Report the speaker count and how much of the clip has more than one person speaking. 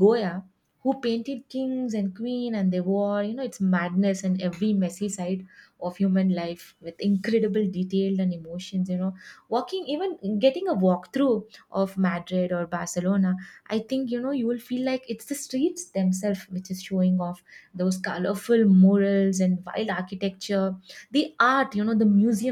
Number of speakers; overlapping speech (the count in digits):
1, no overlap